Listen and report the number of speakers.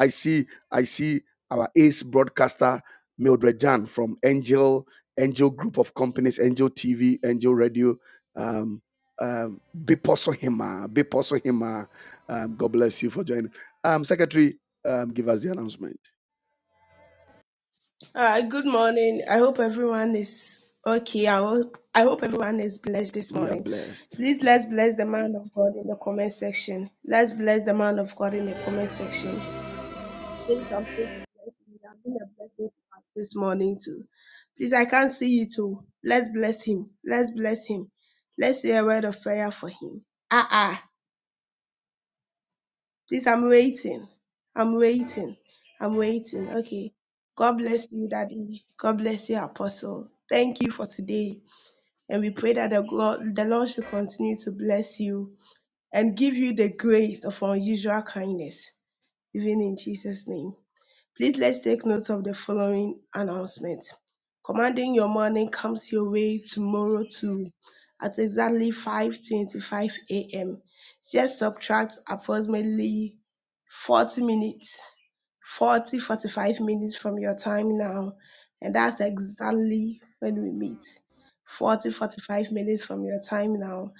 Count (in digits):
2